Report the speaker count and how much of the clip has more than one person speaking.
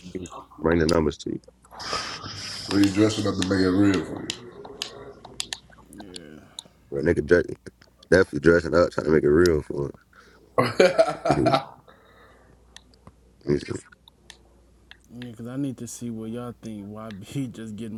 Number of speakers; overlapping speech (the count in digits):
3, about 1%